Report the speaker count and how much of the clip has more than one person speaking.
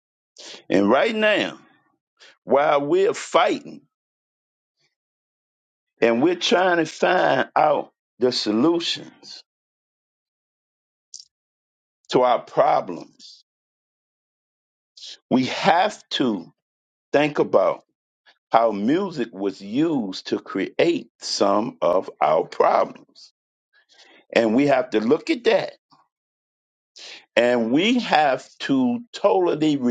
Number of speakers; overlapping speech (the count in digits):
1, no overlap